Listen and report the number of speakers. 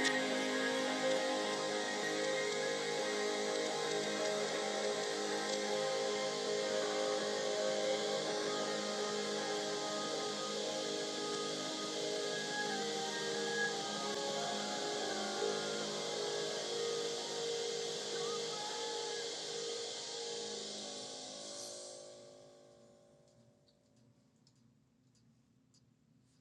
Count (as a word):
zero